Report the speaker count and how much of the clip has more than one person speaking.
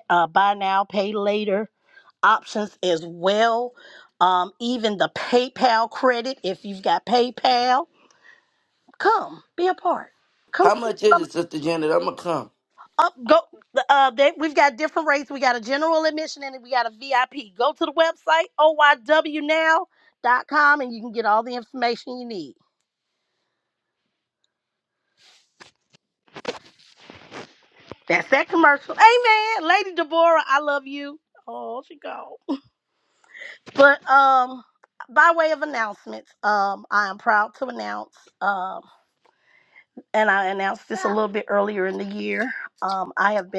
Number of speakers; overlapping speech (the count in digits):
2, about 2%